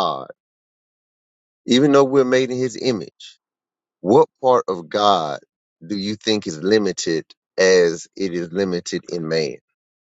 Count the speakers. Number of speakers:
one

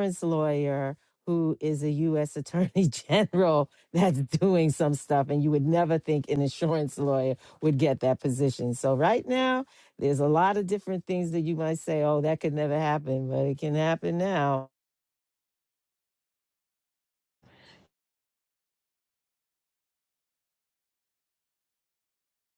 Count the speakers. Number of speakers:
one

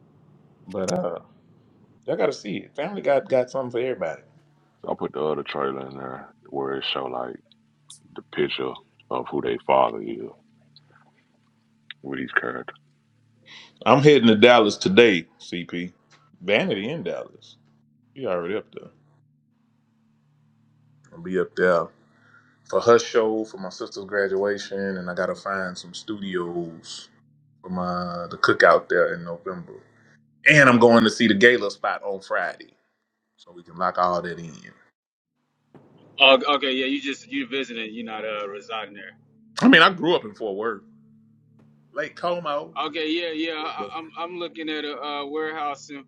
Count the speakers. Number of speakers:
three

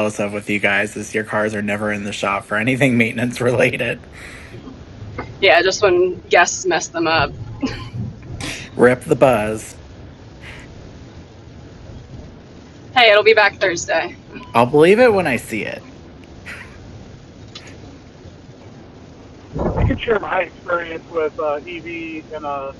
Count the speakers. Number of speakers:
three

